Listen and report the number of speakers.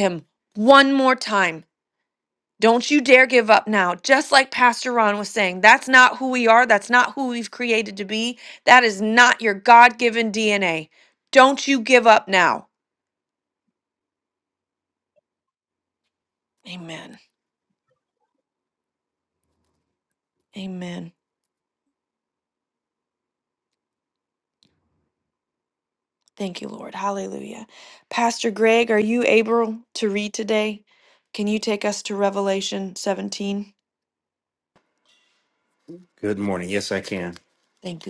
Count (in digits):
2